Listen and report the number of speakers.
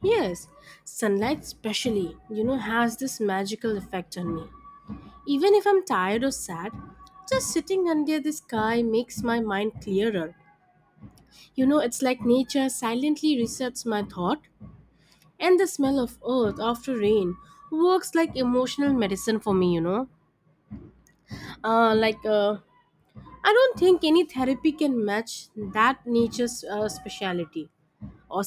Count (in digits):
1